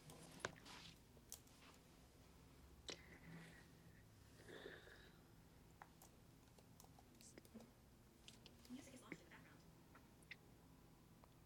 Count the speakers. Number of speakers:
0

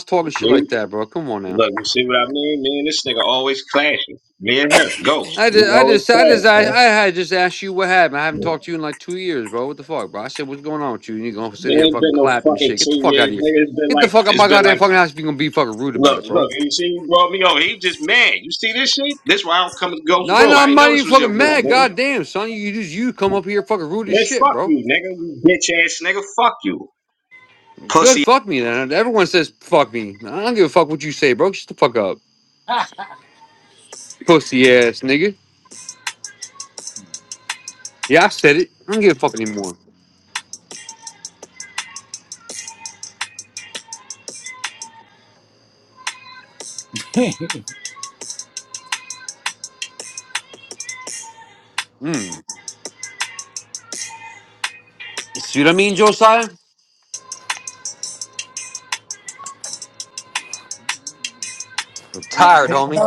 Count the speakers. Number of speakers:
3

